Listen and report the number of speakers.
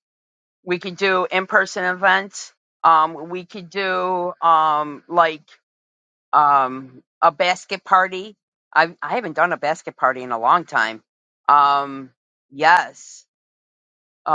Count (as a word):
one